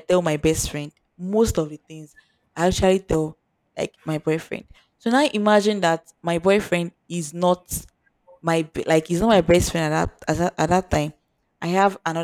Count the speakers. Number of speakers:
1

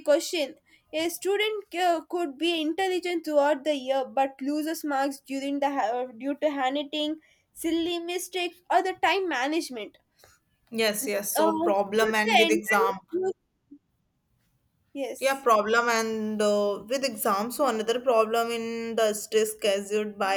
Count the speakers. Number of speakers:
2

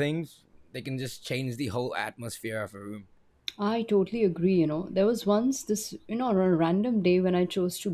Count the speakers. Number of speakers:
2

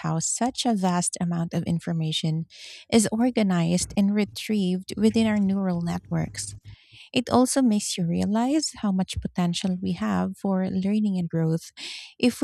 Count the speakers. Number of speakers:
1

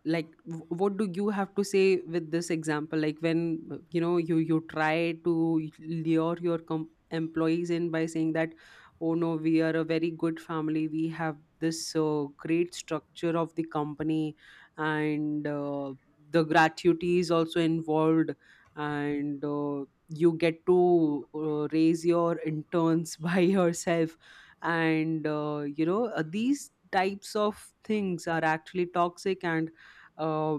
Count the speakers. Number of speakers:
1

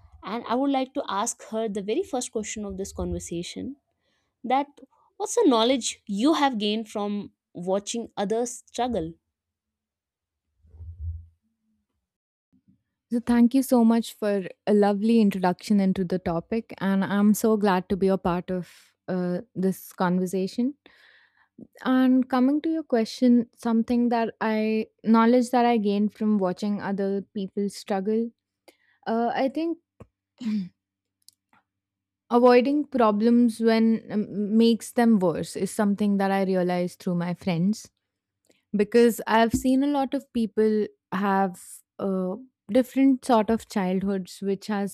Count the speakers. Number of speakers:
2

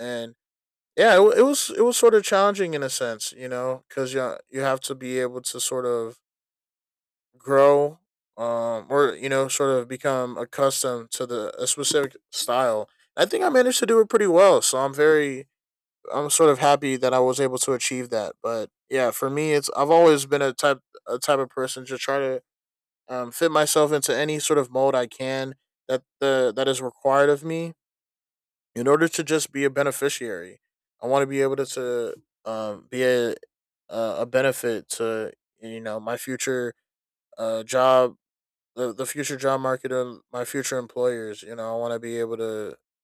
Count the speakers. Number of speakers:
1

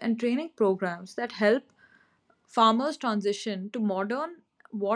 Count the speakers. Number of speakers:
1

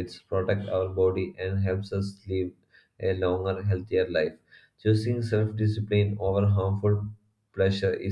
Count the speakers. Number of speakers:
1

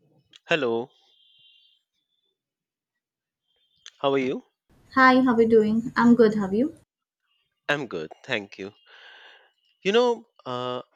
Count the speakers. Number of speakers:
2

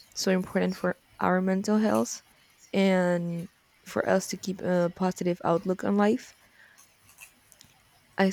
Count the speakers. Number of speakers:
1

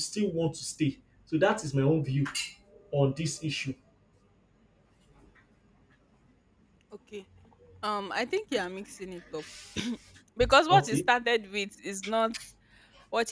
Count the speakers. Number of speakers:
2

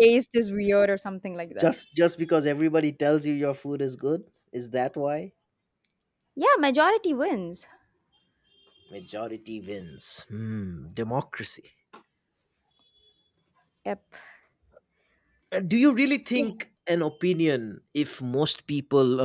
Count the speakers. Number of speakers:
2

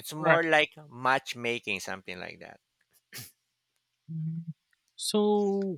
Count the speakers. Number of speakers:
2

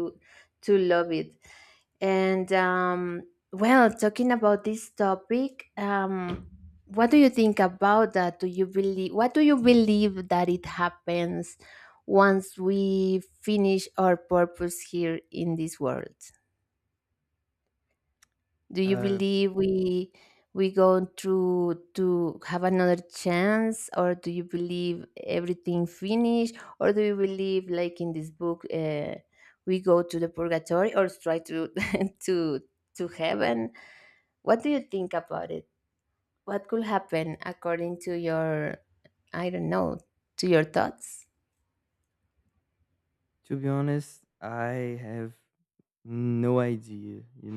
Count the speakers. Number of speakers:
2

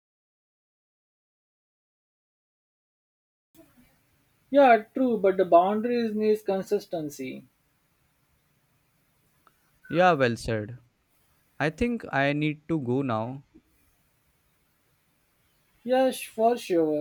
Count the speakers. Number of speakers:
2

